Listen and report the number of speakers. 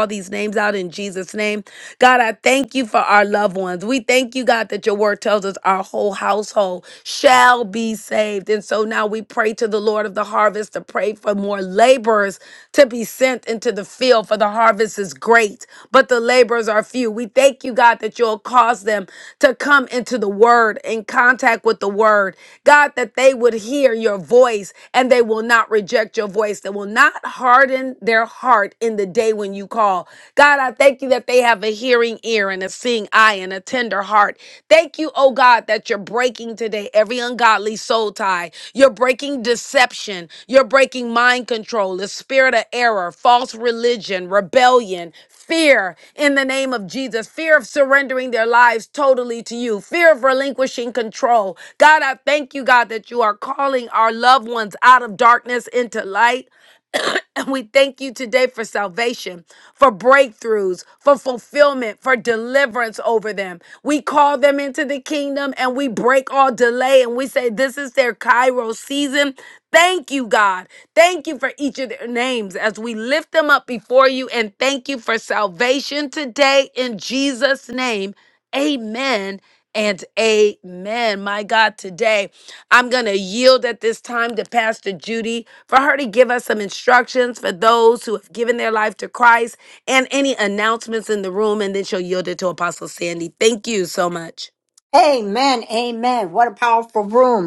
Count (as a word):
two